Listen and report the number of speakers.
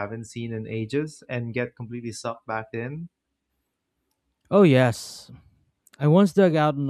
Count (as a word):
two